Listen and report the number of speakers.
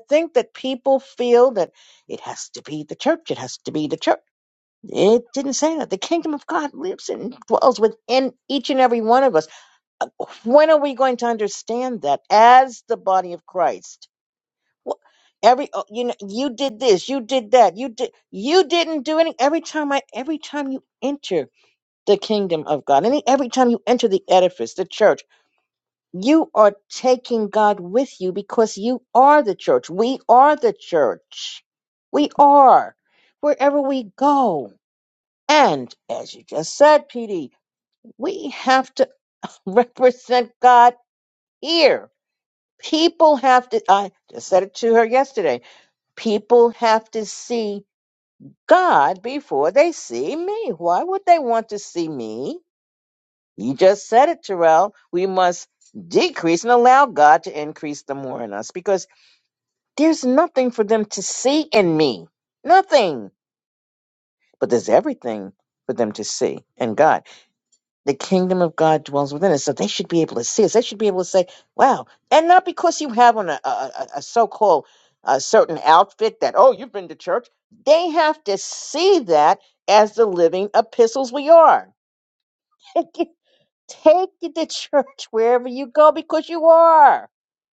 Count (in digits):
1